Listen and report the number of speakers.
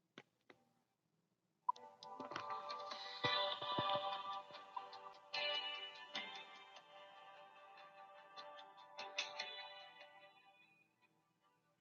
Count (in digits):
0